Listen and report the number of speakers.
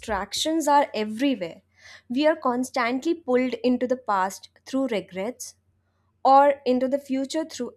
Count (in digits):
1